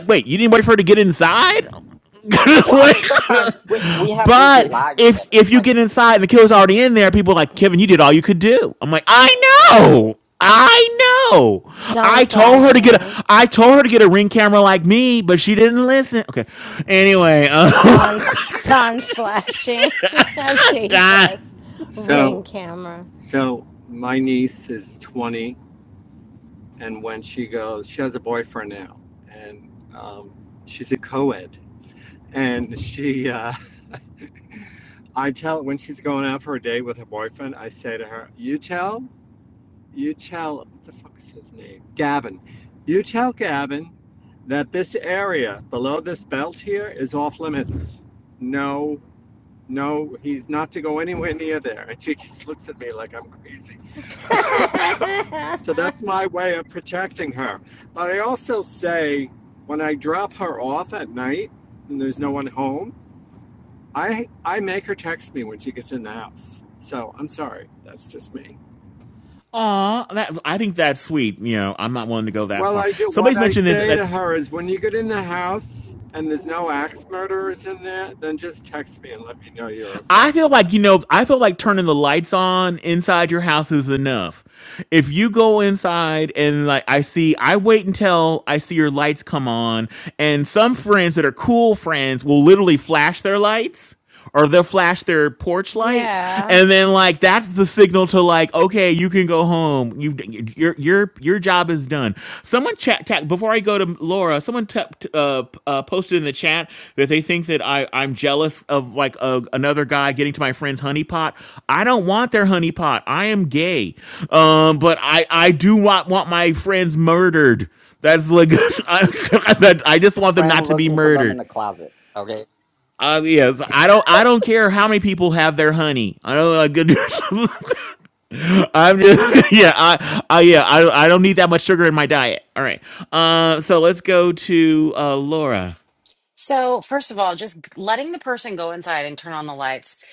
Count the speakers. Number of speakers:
five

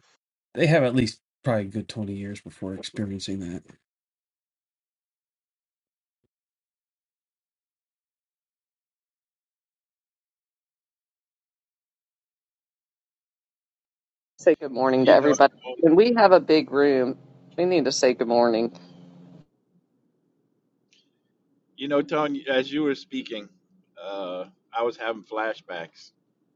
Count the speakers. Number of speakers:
three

